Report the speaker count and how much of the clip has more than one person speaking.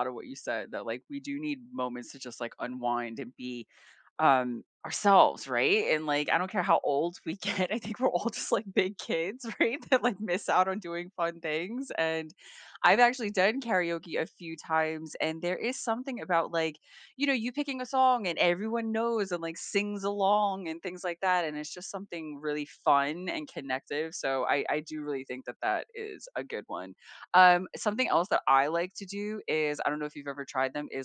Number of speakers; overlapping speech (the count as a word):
one, no overlap